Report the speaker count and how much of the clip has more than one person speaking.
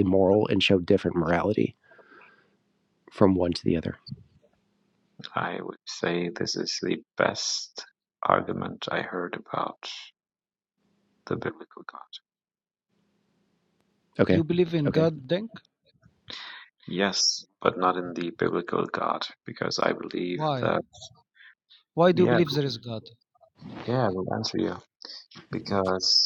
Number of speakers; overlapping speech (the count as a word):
three, about 3%